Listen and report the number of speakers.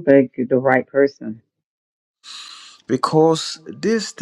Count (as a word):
two